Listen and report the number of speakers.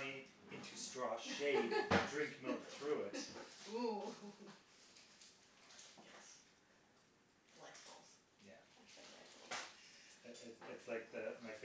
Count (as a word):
two